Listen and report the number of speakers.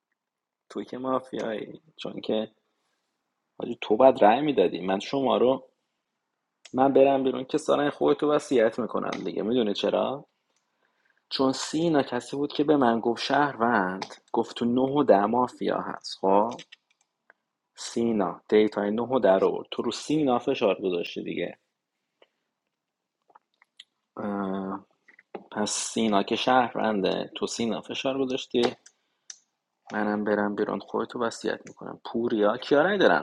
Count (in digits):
1